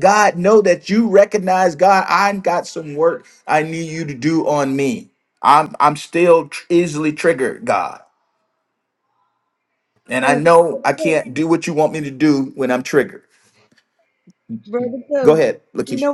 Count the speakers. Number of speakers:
two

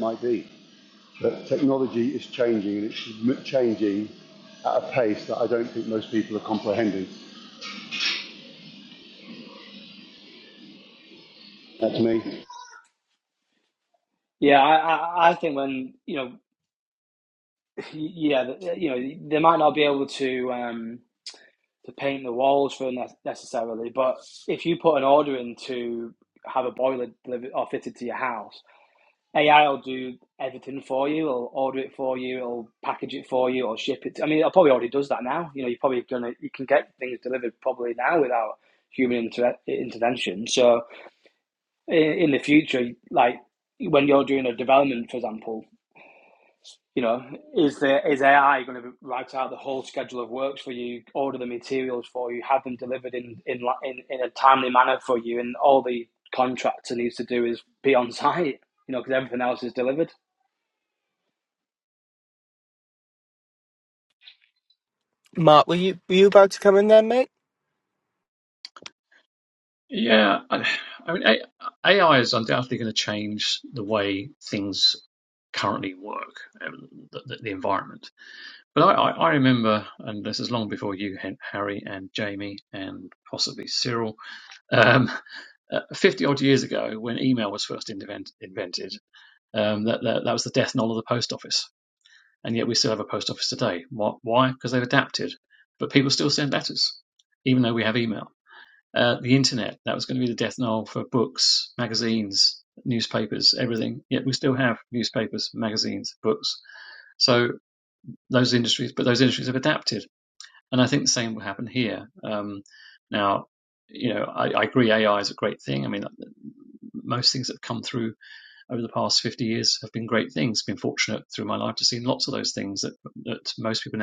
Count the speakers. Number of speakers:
four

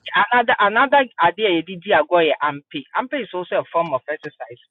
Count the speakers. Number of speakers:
one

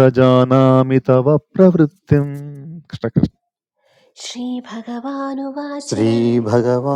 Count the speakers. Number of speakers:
three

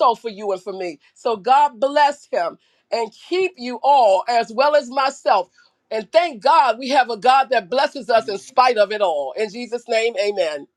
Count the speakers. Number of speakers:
one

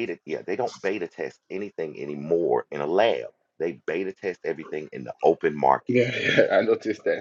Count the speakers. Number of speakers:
two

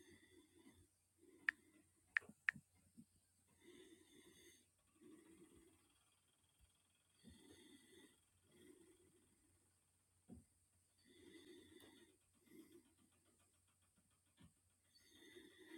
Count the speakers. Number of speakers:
zero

